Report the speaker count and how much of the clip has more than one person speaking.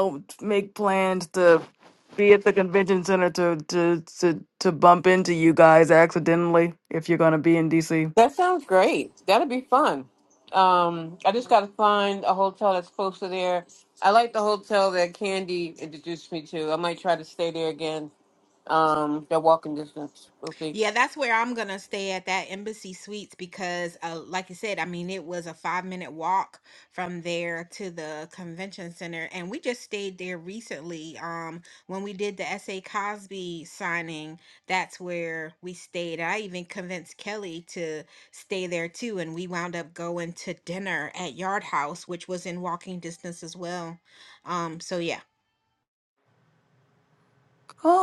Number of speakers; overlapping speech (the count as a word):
three, no overlap